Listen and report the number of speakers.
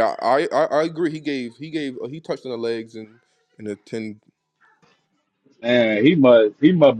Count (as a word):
two